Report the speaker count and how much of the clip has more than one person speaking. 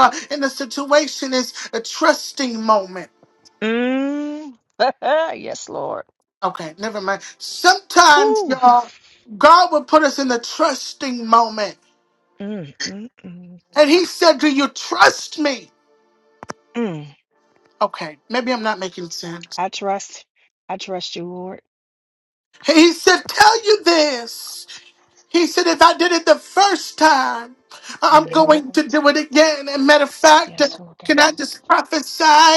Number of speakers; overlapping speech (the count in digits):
2, about 4%